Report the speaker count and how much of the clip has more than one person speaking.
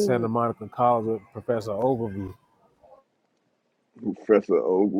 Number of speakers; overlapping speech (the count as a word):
two, about 6%